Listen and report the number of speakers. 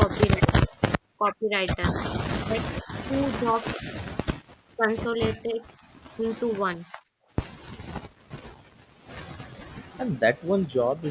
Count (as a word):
two